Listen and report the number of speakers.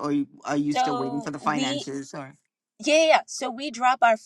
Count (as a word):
two